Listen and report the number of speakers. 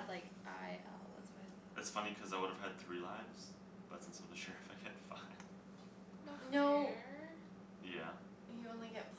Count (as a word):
three